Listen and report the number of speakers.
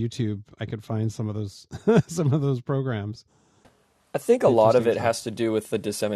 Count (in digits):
2